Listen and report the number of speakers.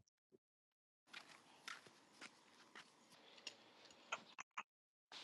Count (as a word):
zero